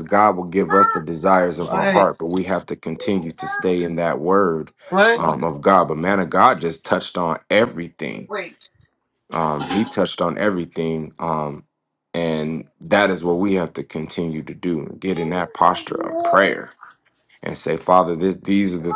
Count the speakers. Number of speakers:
two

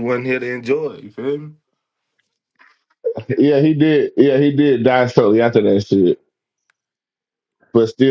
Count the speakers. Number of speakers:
two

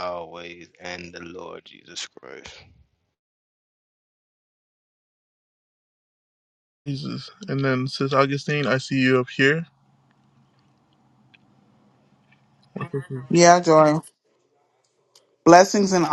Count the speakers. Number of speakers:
three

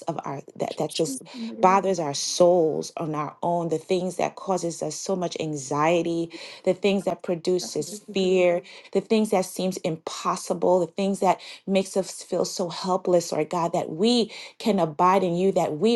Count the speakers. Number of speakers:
one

